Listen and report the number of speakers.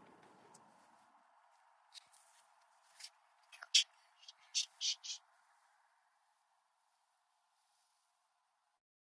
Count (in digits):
0